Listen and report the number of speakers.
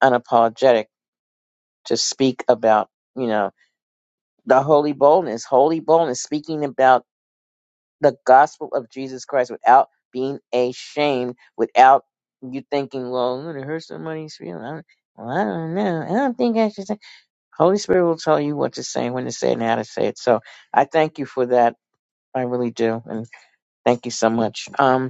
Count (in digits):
1